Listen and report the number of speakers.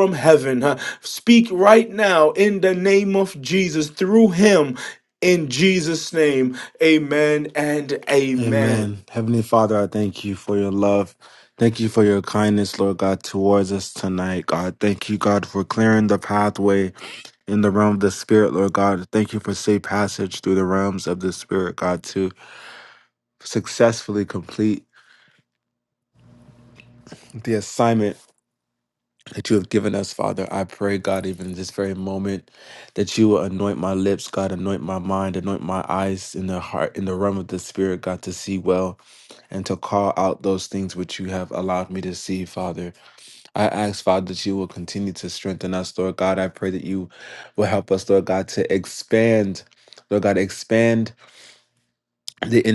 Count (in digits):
2